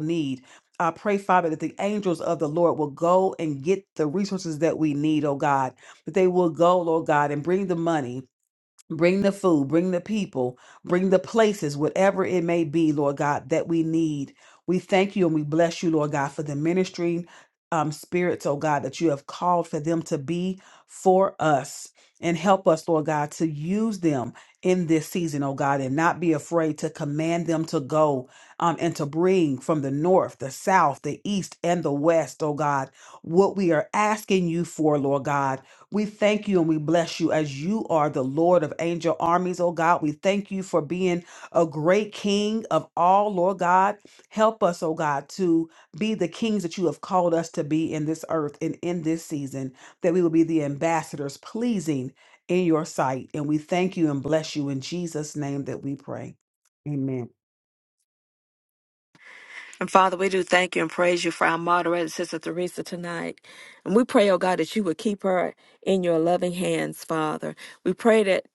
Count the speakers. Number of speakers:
2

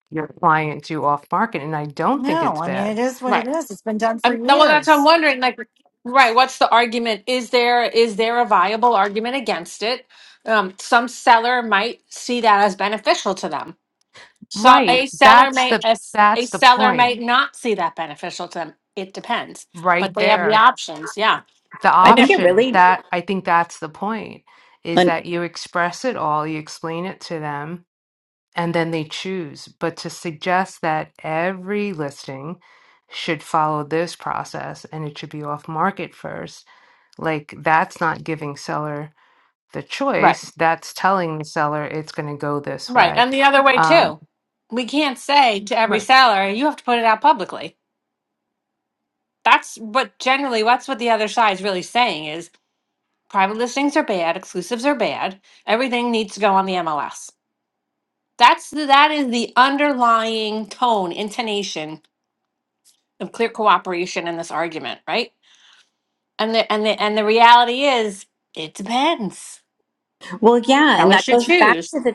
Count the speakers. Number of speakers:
4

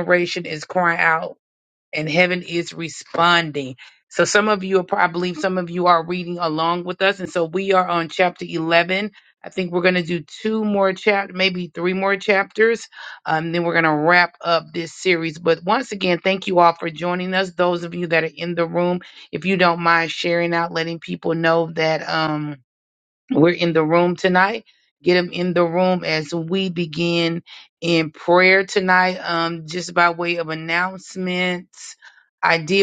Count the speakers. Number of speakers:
1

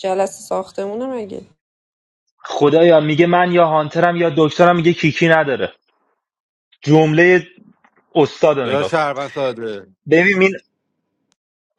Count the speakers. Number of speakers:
3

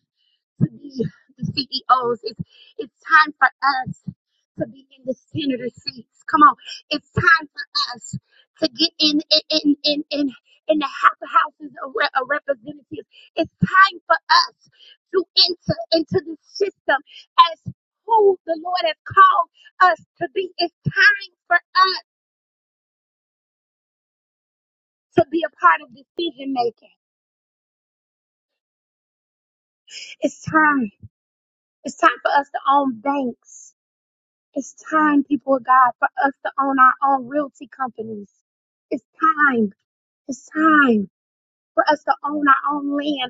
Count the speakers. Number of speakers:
1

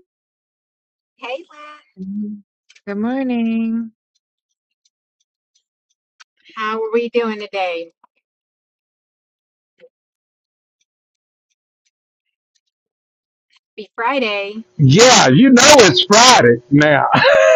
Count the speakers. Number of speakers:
3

